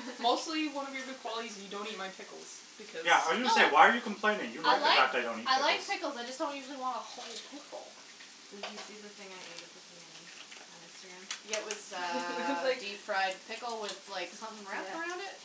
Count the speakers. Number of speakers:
4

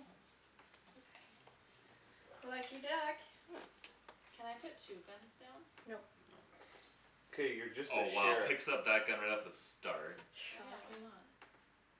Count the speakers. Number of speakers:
4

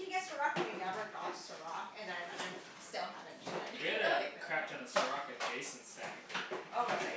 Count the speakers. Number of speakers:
2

